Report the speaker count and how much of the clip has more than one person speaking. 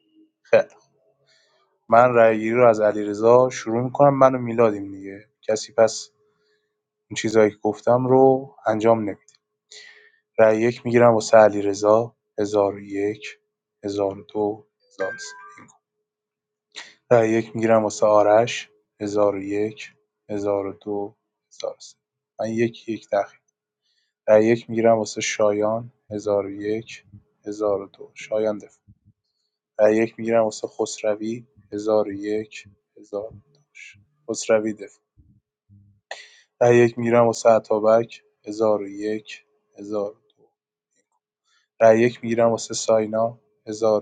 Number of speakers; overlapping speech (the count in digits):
1, no overlap